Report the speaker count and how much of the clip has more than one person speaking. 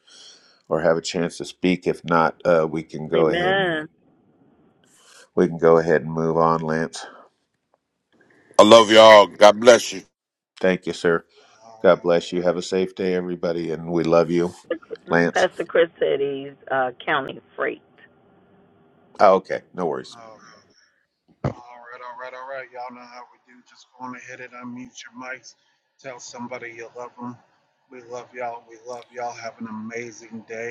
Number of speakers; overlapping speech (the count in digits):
4, about 5%